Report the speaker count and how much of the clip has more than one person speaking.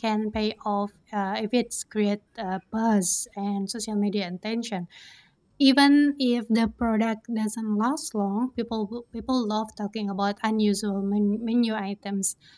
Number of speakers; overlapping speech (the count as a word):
one, no overlap